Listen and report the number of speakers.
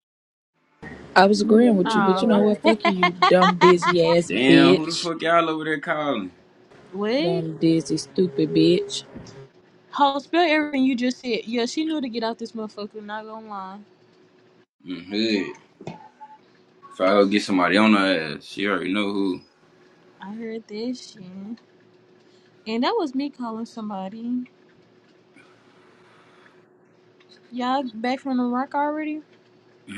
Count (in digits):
3